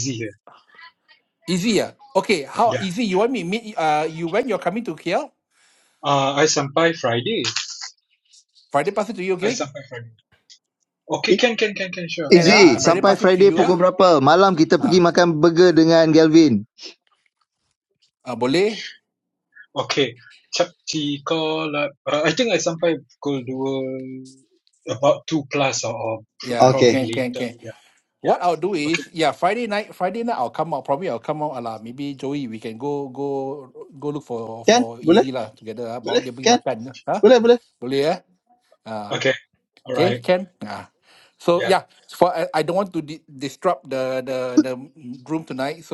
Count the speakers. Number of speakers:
3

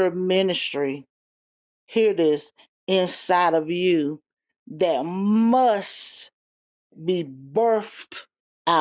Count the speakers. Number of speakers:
1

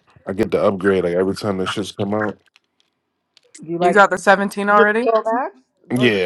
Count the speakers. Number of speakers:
3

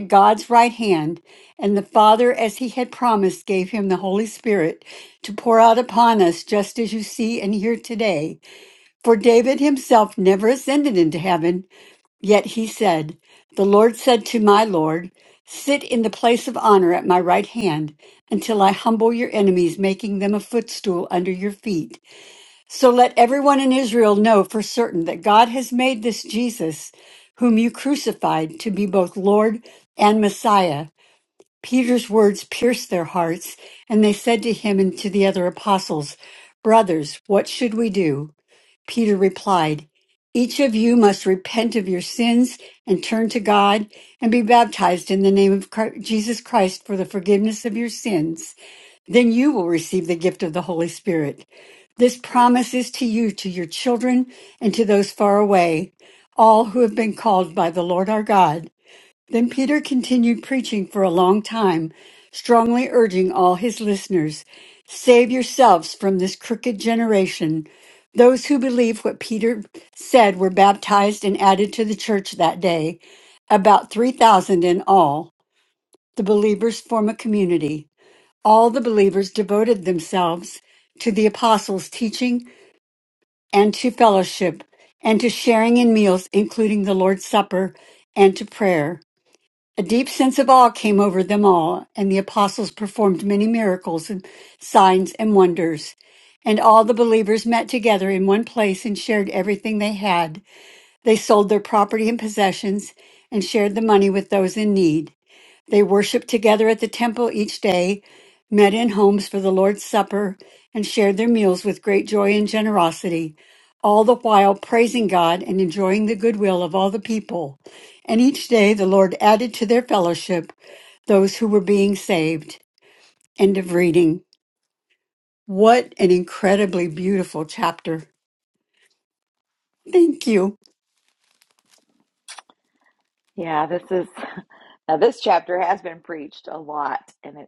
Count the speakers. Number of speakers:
2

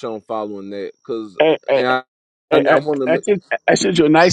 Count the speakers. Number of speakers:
2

